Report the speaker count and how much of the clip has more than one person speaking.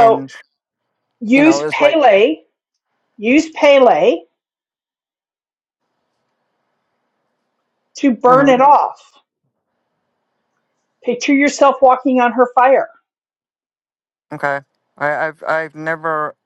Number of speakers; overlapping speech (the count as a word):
two, about 7%